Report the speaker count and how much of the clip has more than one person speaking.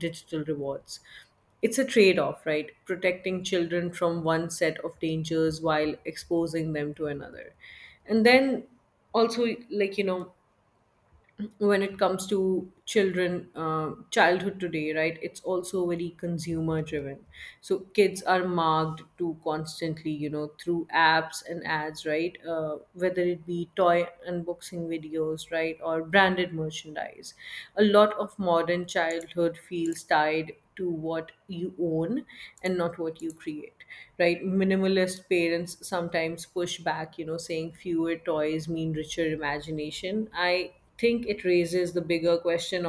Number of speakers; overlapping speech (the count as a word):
one, no overlap